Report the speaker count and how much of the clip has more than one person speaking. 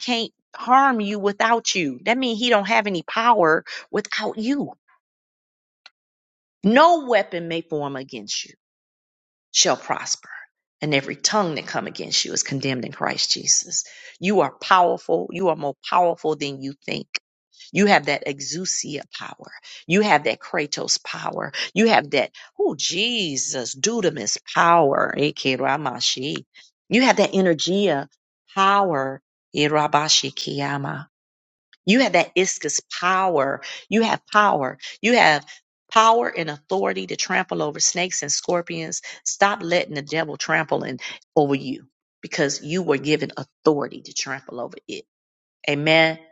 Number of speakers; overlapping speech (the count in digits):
1, no overlap